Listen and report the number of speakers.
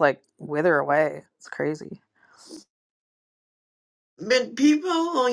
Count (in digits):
2